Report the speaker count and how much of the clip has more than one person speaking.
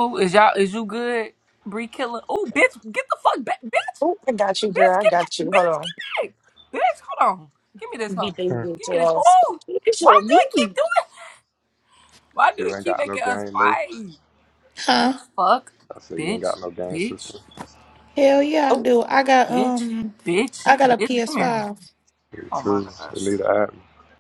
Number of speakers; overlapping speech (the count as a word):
four, about 28%